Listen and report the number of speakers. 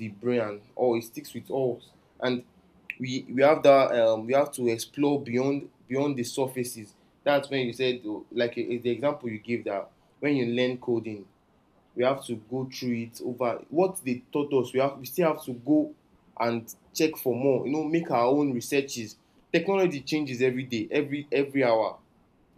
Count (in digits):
1